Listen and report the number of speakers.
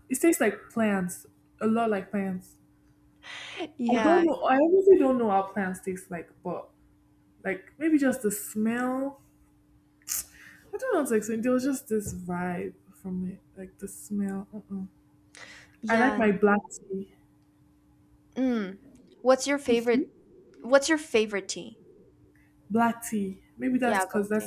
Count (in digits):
2